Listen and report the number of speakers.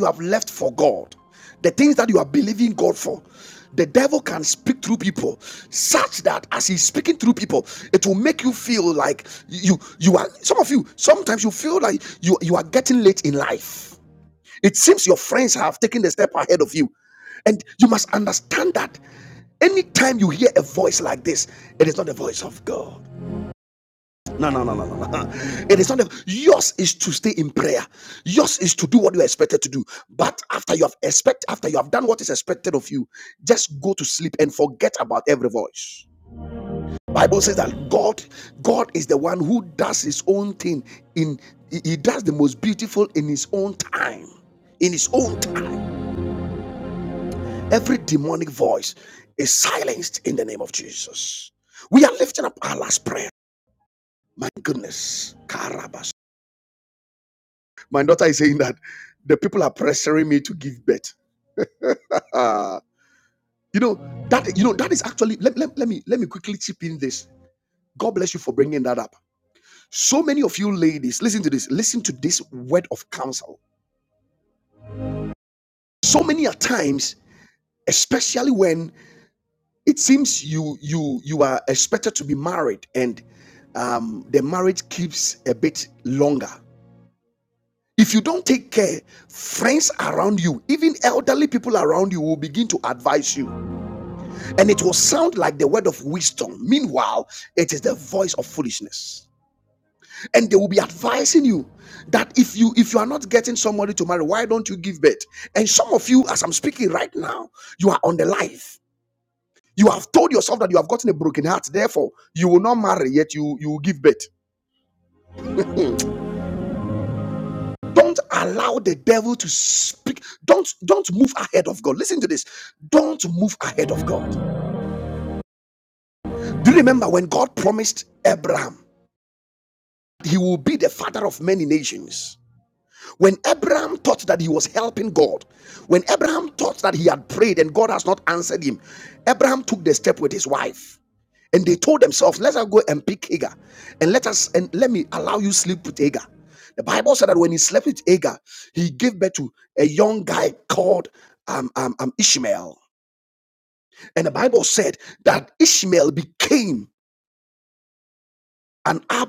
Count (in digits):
1